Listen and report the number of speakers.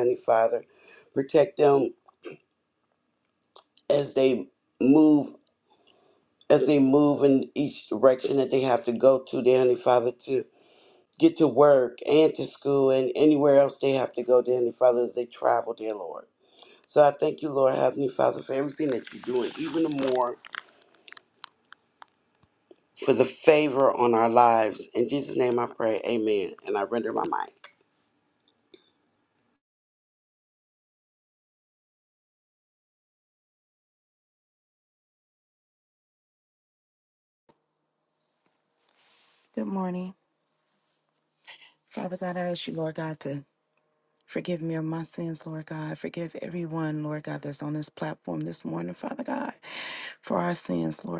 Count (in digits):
2